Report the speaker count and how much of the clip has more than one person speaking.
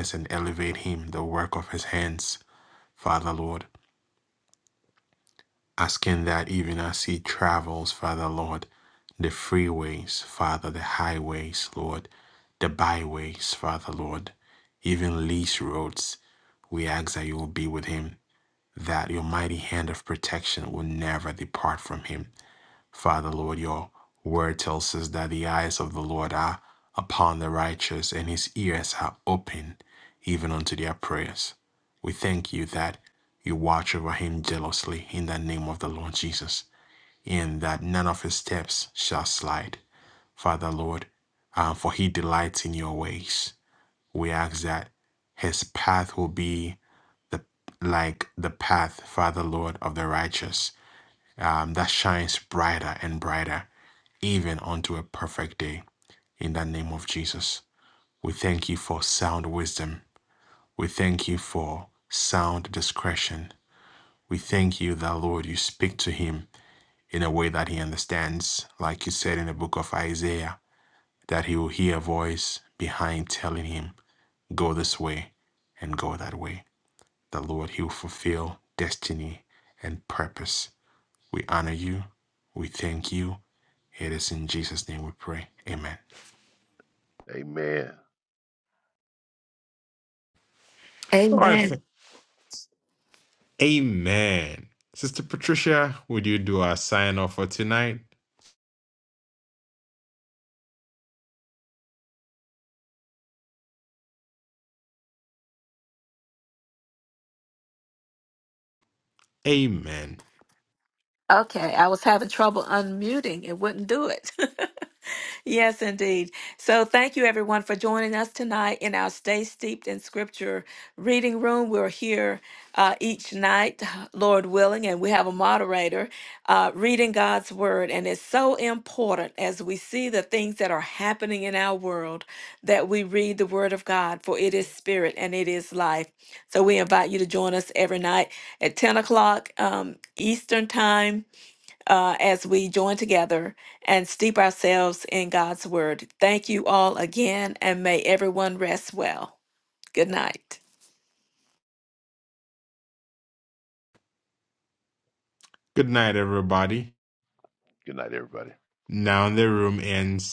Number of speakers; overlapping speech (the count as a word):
three, under 1%